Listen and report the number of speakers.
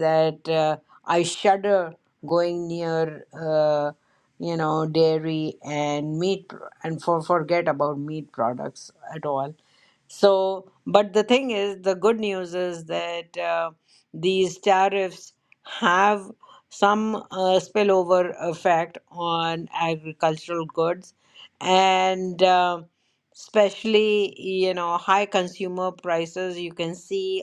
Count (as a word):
one